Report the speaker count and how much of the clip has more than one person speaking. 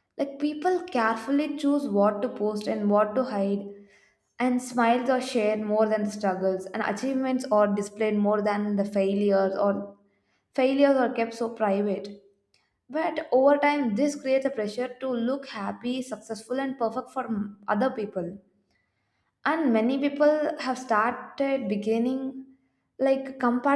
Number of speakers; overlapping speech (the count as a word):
one, no overlap